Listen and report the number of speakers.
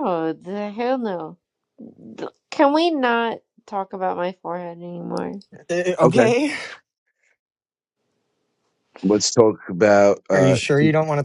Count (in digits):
3